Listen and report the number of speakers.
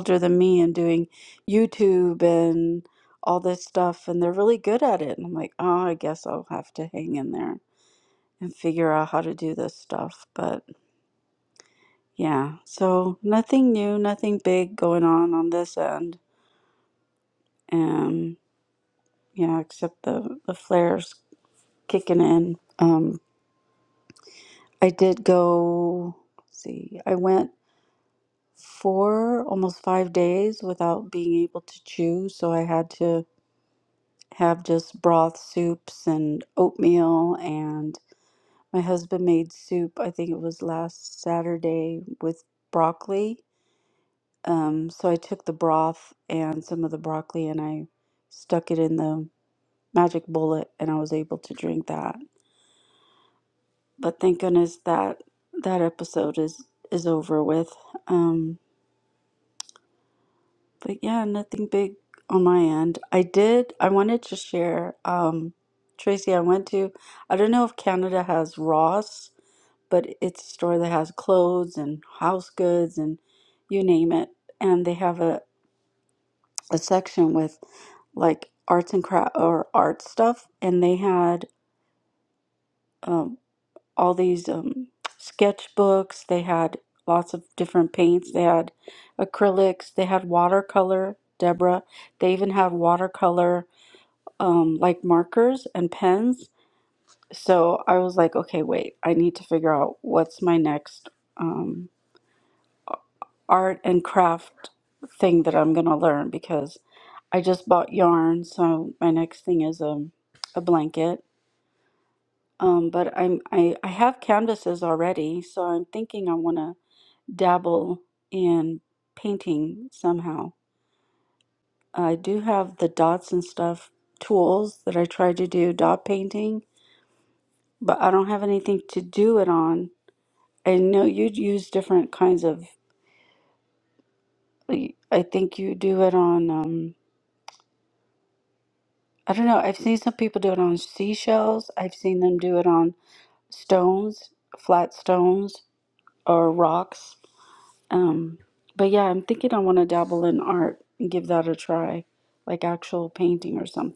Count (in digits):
1